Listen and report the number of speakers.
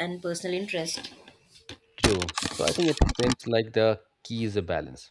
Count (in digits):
2